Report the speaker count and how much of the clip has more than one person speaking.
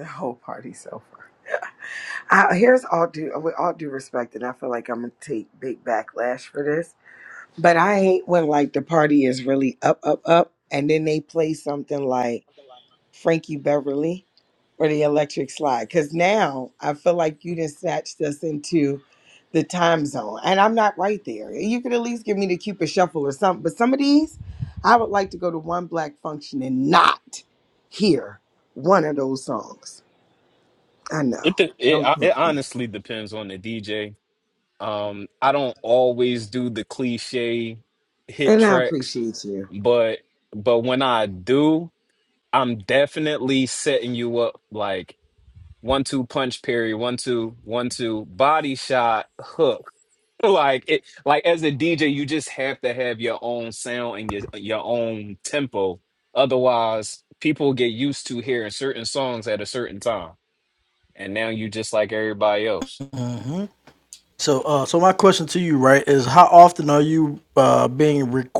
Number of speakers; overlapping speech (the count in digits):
3, about 2%